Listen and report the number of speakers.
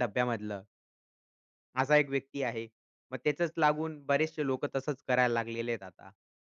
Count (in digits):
1